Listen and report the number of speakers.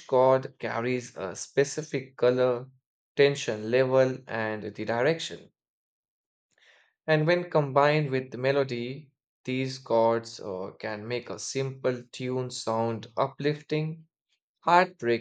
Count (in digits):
1